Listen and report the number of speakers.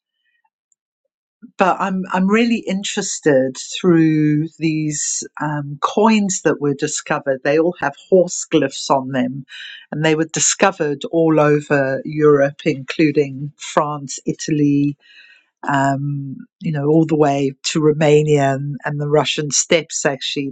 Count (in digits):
1